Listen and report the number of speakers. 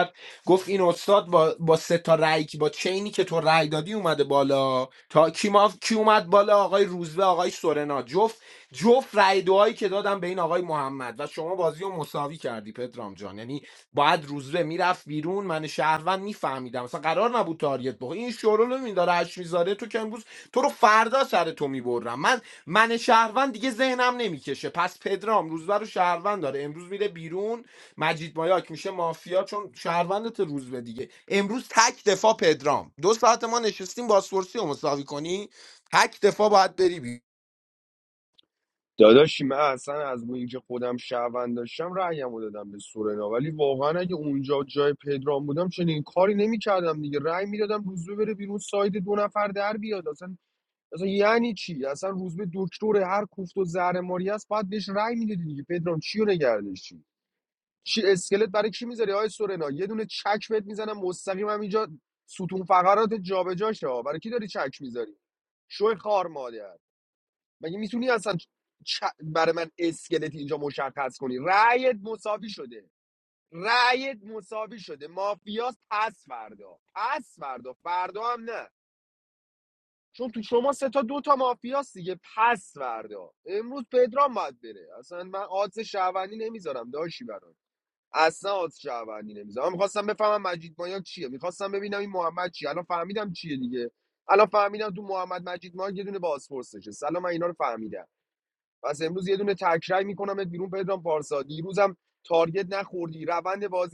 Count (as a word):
two